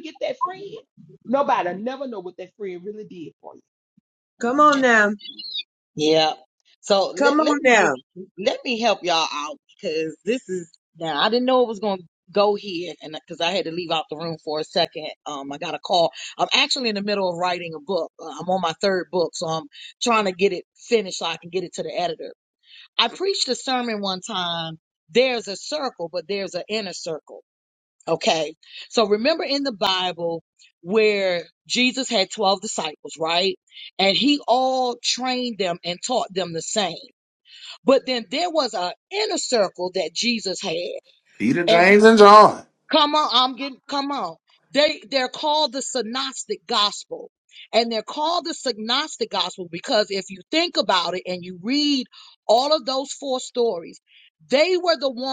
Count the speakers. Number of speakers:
4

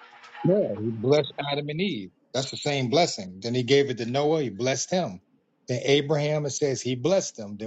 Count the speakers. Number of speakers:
1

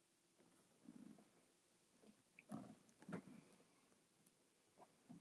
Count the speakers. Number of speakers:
0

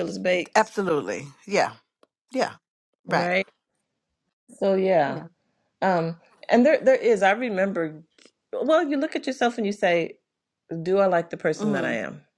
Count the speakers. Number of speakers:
2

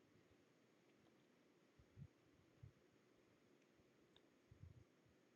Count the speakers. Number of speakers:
0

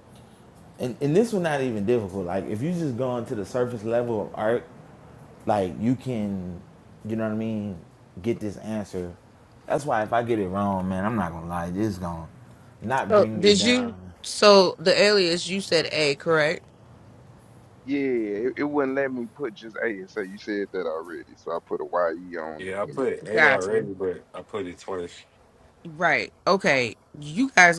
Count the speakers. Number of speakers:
4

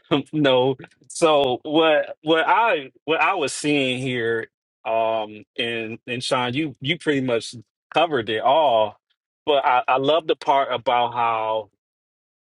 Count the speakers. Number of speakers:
1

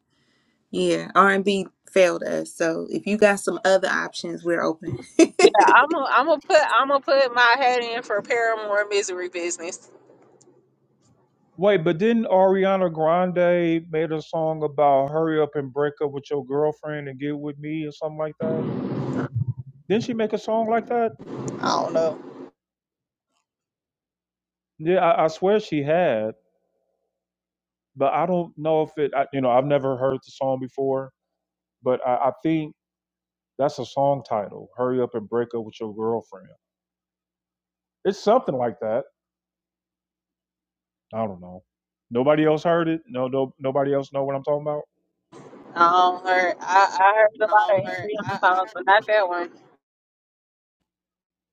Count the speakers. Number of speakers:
3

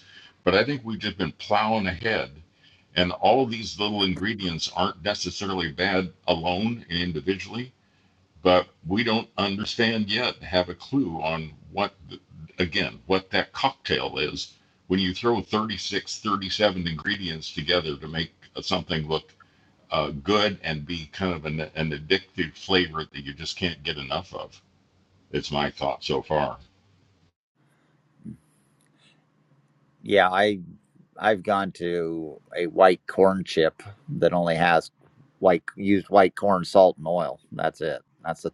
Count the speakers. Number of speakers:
2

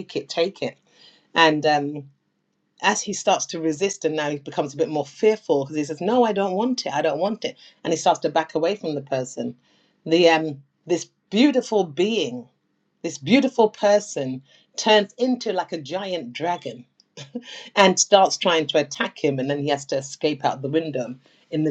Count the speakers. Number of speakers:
1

